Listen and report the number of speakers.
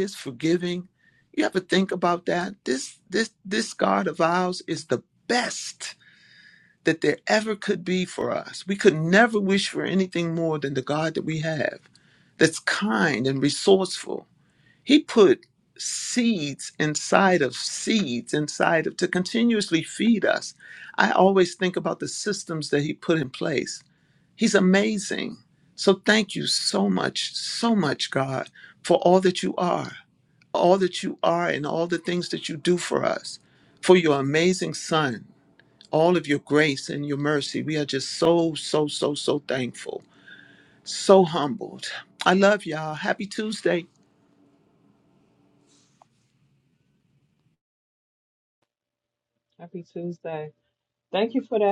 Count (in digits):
2